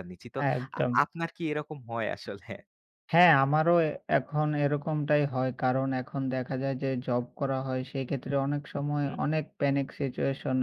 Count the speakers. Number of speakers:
two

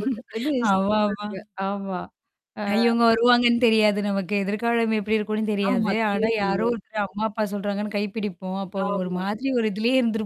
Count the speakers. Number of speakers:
two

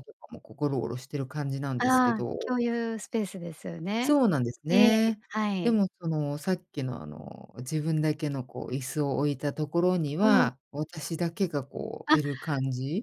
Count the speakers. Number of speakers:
two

